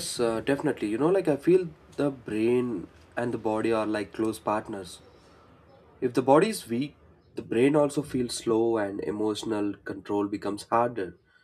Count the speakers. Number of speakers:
1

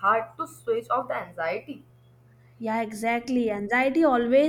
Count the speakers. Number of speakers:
2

